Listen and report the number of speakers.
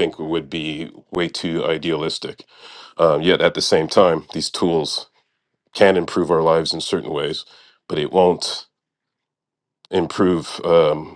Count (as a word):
one